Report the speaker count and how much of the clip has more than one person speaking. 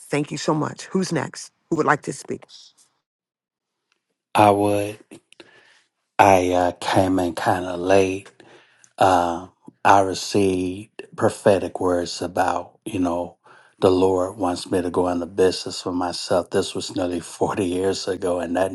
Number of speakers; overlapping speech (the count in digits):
2, no overlap